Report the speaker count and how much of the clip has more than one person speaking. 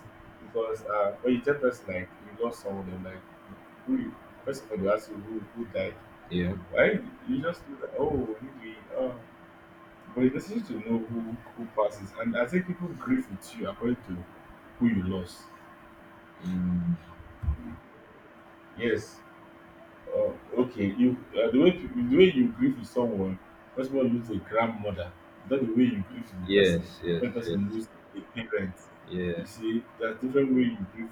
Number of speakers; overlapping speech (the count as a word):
two, about 2%